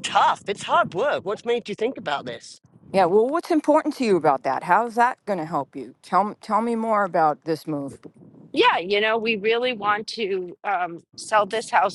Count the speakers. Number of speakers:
3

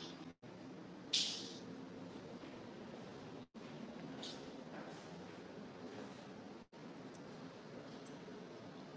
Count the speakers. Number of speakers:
0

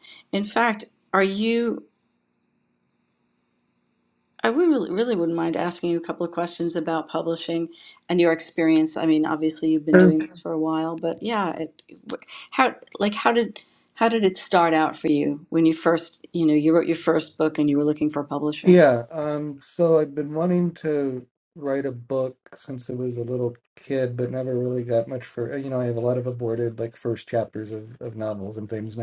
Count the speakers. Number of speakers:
2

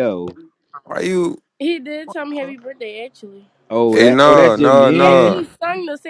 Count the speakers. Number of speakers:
3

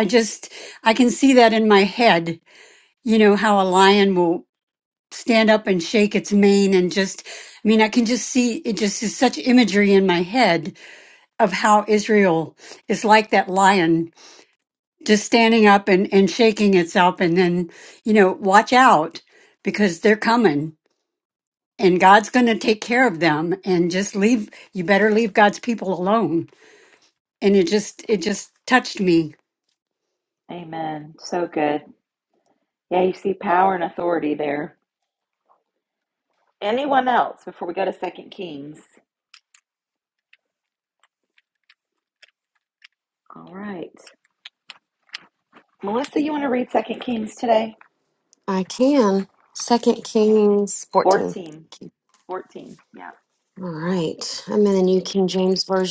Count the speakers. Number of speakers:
3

